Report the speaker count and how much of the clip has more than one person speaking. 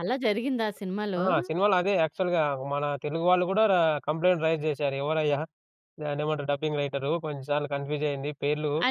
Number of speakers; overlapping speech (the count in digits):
2, about 1%